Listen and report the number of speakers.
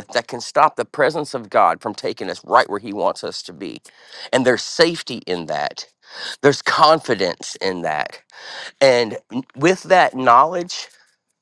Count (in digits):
1